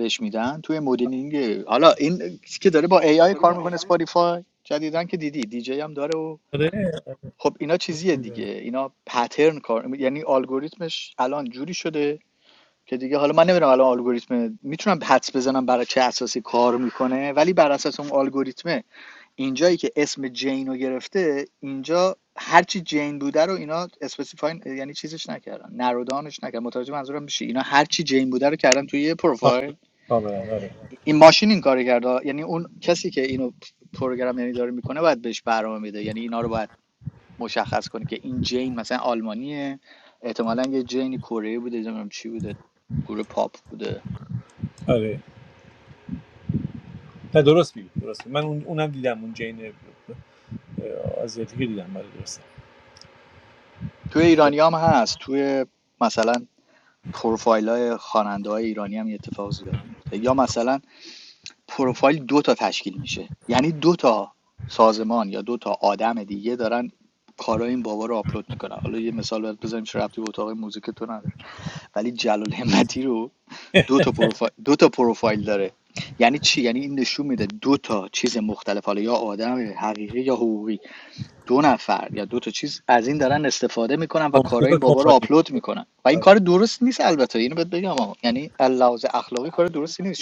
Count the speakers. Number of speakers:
2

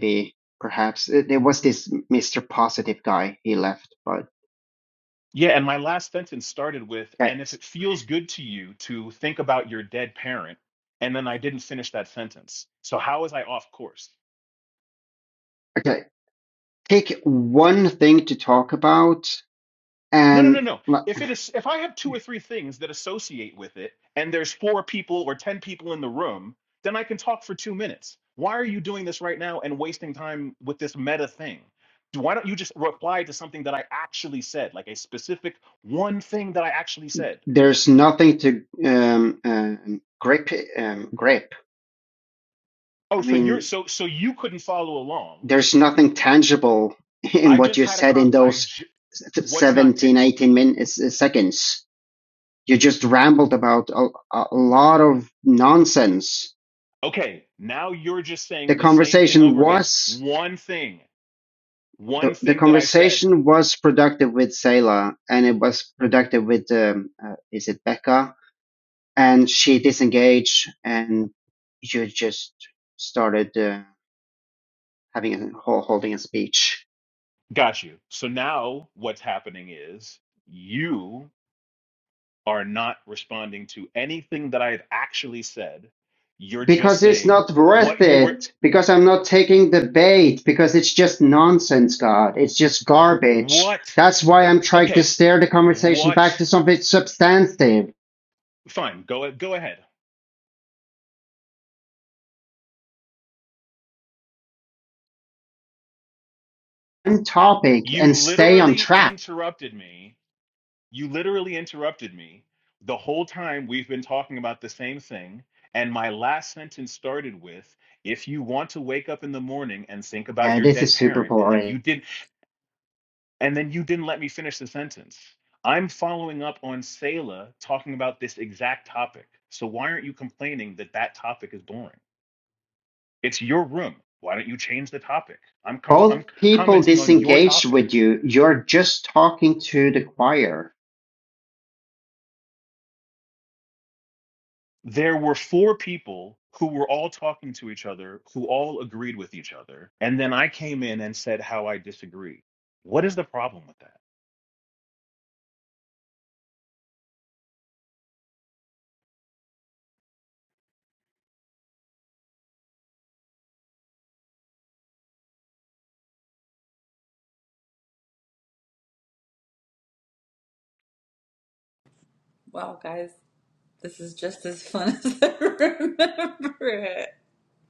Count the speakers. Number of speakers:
3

